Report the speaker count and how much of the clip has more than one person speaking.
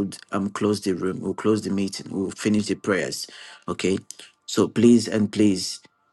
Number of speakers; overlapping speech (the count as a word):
one, no overlap